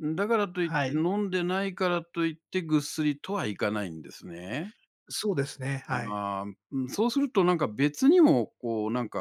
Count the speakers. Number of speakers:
2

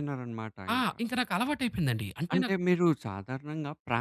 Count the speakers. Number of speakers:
2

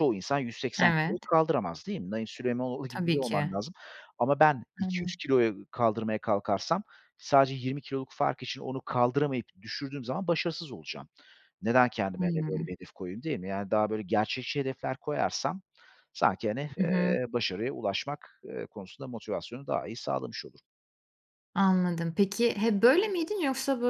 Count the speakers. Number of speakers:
2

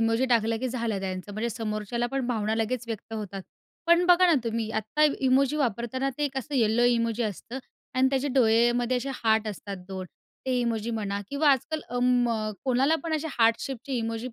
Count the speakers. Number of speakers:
1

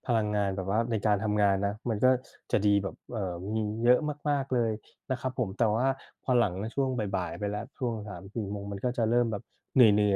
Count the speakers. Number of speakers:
1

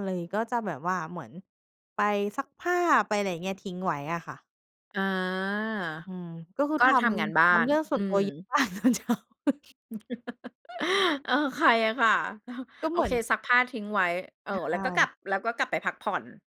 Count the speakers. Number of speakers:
2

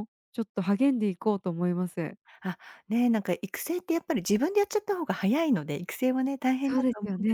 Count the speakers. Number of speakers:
2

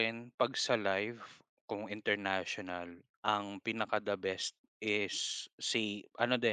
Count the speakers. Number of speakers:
1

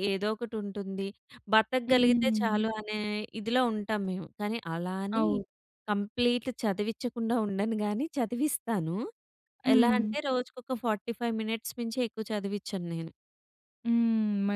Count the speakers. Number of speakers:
2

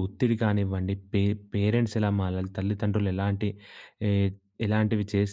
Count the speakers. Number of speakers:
1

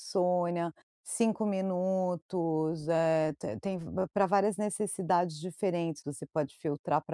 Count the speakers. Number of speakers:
1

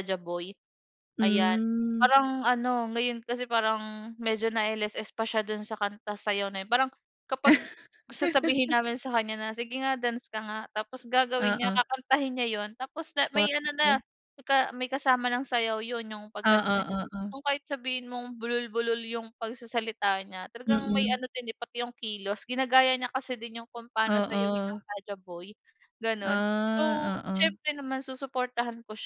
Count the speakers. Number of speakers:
2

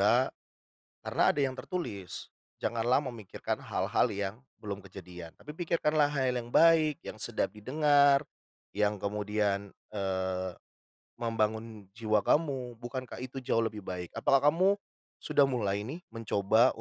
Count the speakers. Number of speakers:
1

